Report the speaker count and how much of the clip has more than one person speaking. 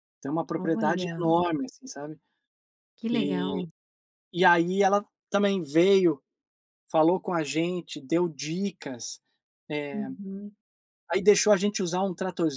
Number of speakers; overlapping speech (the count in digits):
2, about 12%